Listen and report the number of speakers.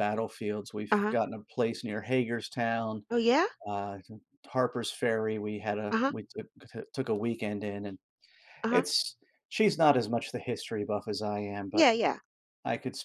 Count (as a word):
two